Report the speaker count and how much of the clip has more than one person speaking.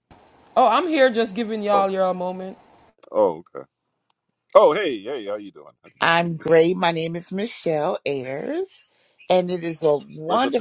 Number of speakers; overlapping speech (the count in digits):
3, about 4%